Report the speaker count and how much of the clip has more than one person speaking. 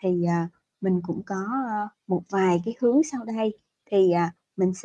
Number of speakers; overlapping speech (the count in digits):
1, no overlap